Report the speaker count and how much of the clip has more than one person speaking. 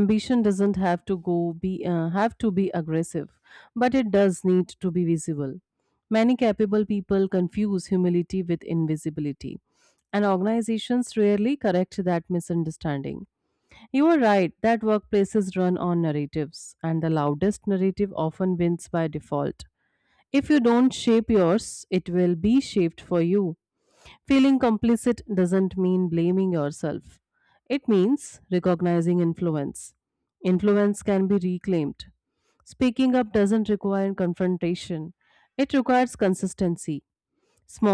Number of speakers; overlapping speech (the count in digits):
1, no overlap